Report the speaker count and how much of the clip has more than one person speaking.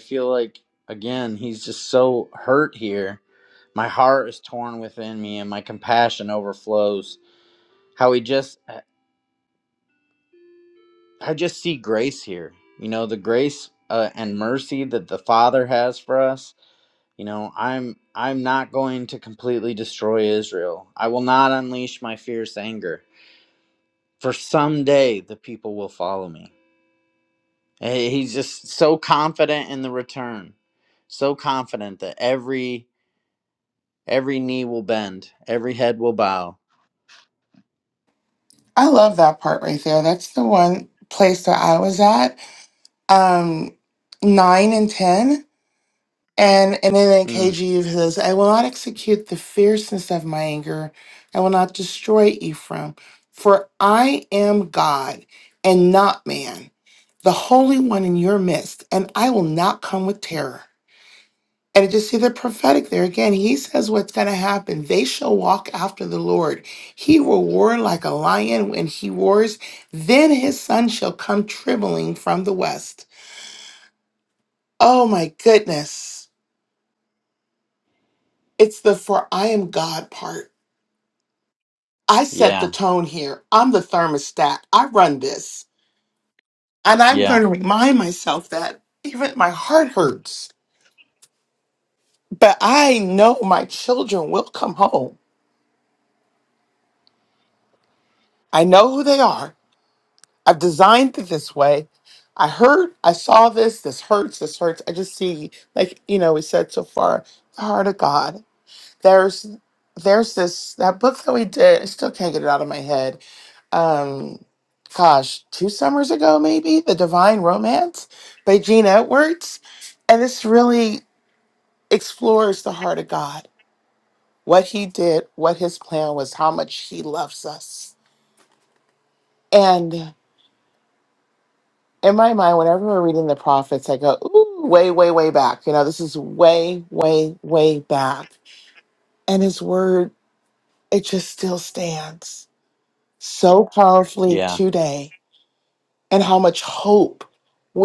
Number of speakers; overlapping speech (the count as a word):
two, about 1%